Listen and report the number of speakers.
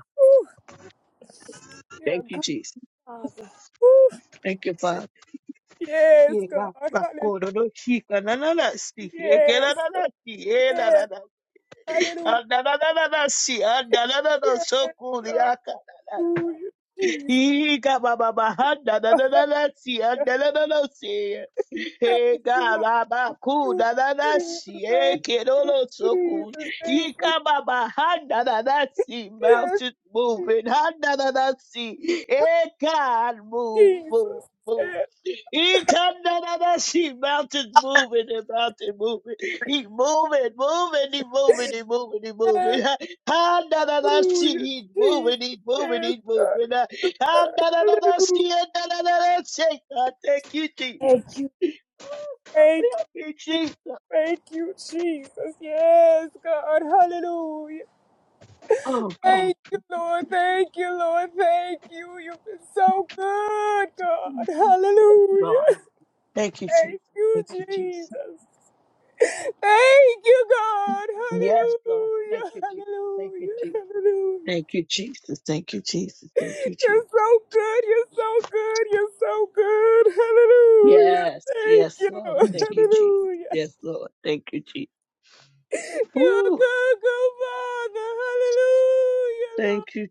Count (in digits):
2